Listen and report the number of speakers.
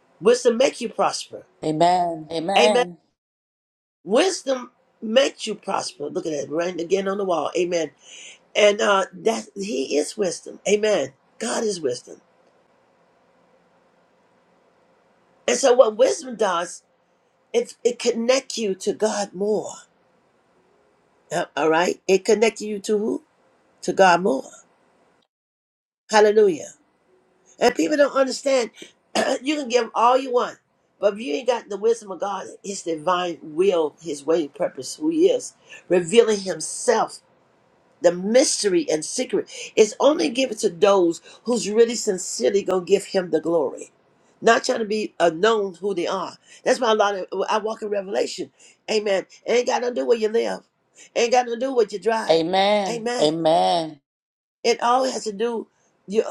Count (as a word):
two